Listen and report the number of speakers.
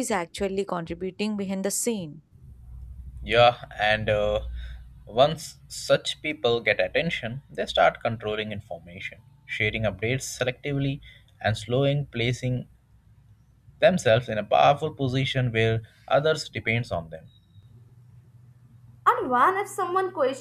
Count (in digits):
3